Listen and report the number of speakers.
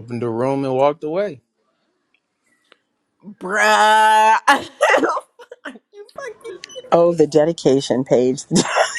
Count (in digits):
3